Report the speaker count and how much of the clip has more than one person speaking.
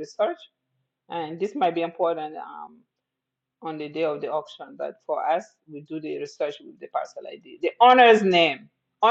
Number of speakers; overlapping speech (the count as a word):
one, no overlap